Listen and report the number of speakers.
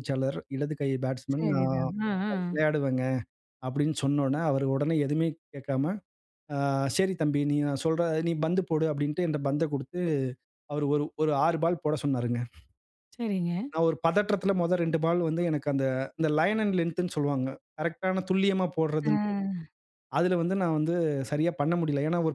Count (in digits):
2